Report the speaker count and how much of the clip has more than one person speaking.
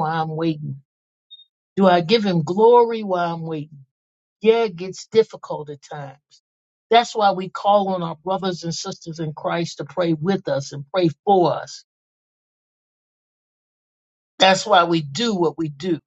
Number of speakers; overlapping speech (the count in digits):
1, no overlap